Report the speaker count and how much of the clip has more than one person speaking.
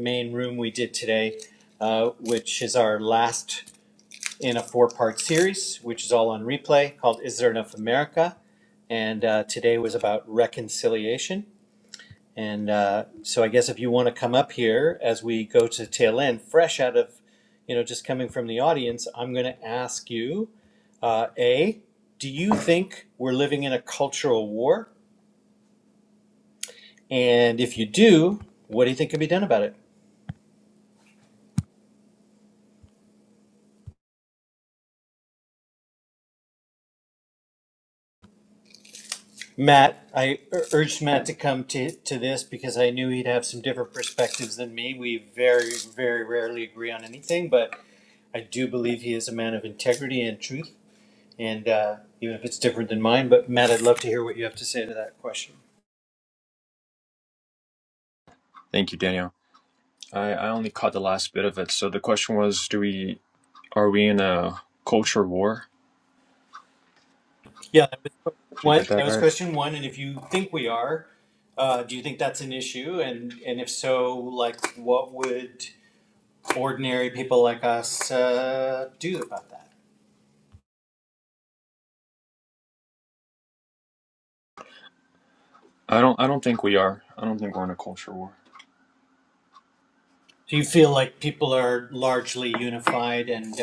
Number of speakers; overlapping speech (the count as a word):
two, about 1%